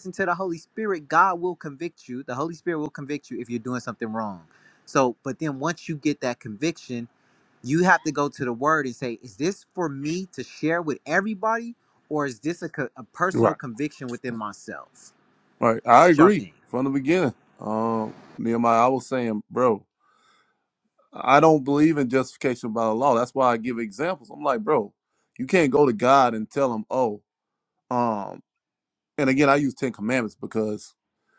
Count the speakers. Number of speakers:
2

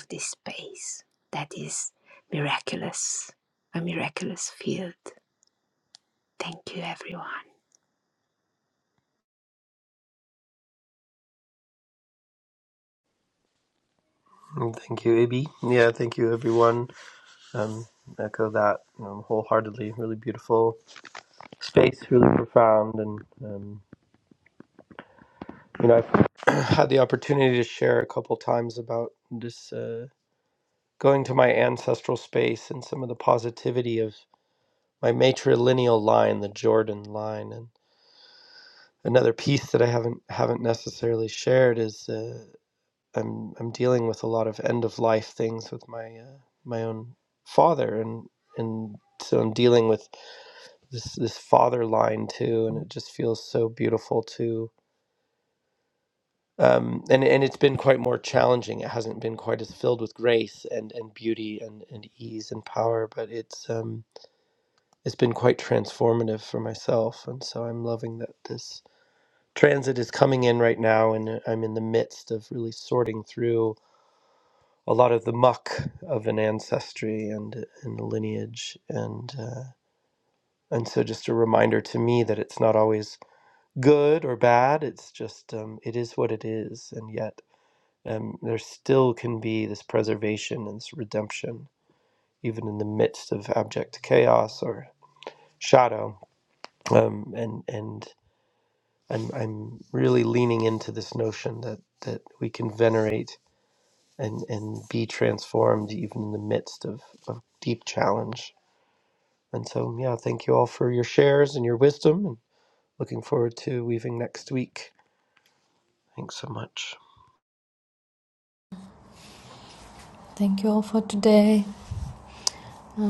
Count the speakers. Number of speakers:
3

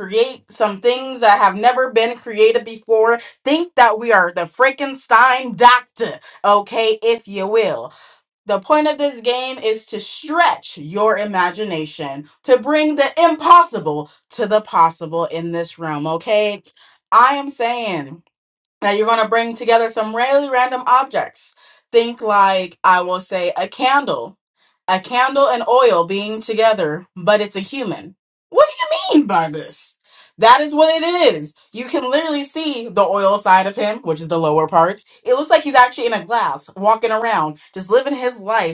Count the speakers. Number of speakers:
1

